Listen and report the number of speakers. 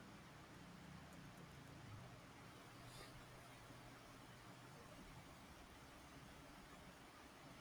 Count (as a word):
zero